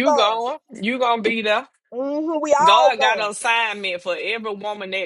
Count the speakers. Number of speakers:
2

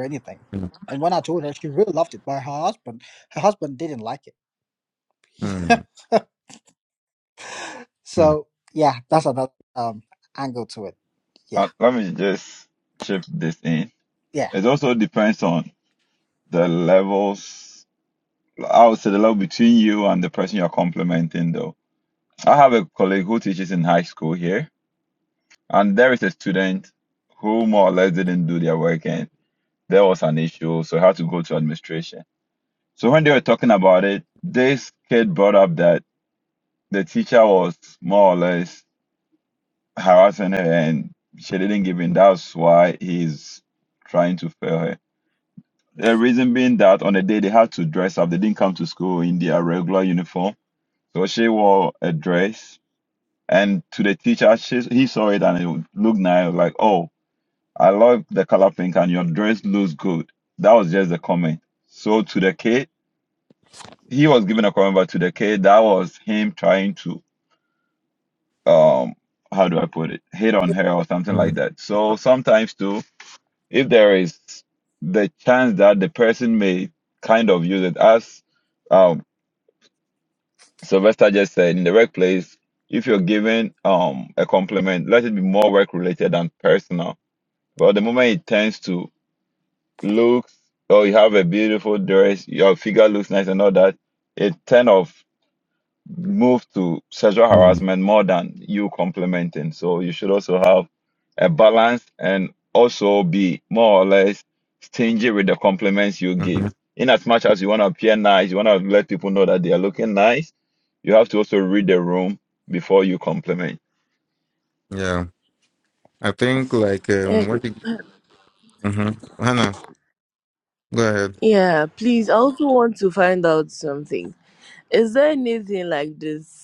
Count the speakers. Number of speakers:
4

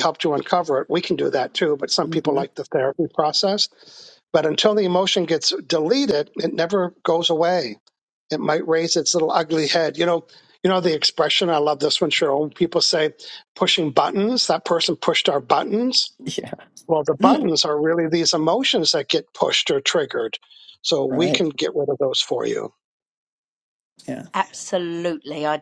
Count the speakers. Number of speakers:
3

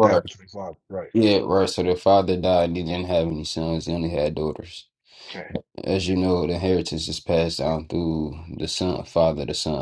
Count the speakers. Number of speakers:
2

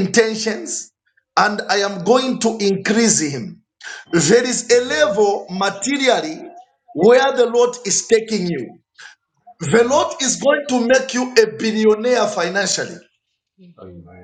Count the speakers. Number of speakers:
2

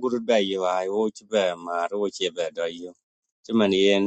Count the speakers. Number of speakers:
1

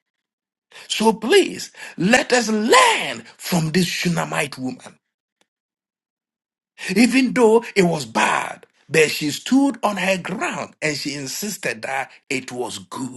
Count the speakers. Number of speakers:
1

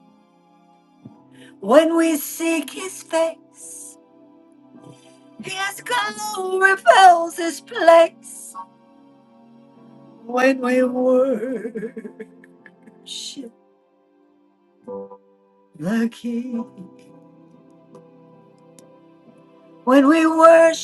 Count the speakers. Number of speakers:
1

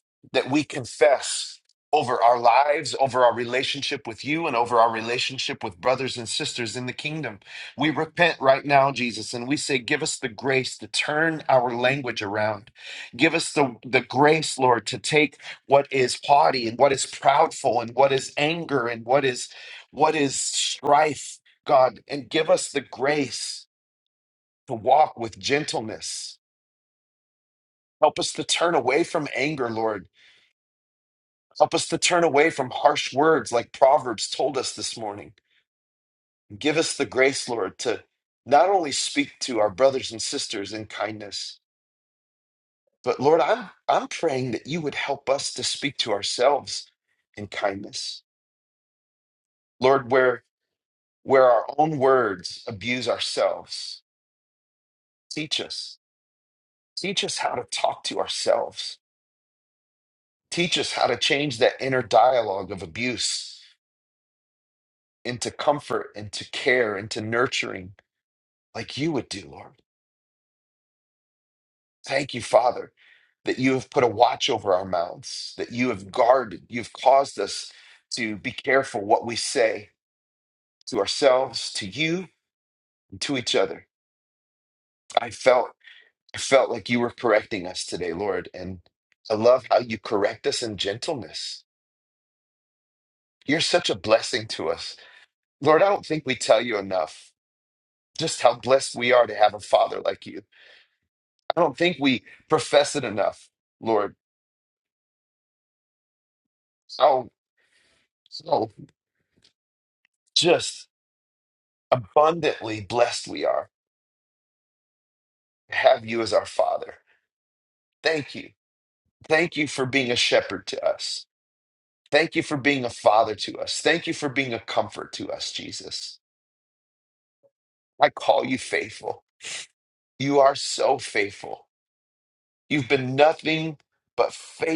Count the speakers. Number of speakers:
1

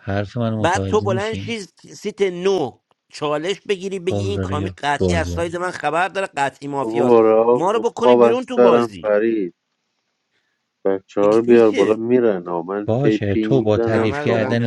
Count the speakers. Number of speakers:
3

